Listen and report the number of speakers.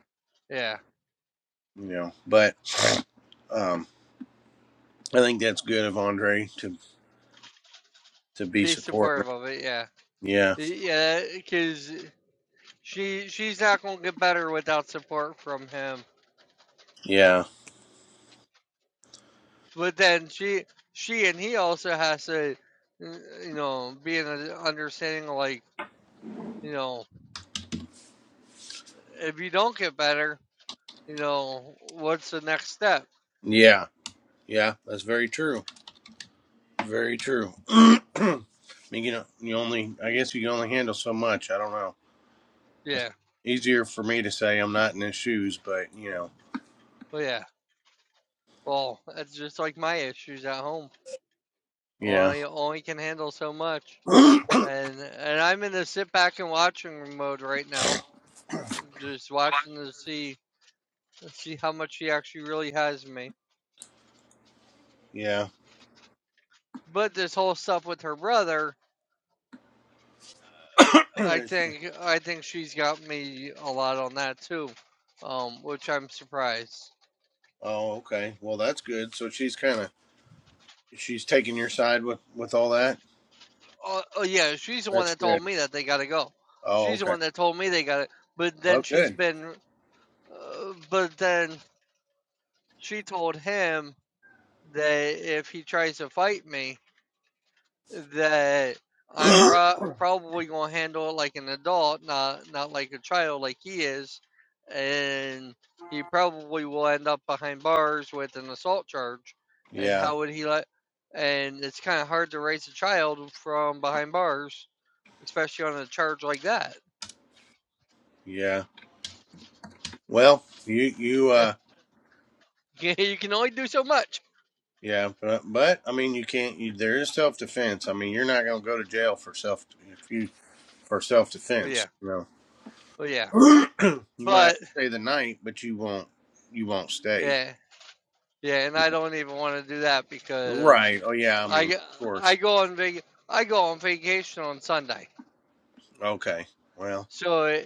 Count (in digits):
2